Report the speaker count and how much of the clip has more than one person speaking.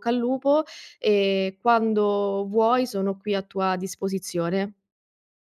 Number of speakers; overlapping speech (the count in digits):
1, no overlap